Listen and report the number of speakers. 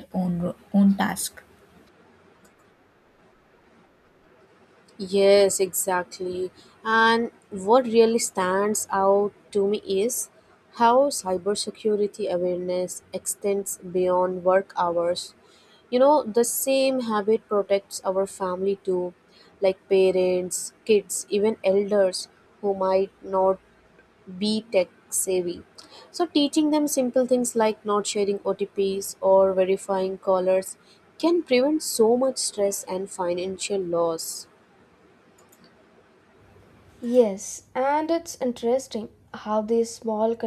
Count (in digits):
3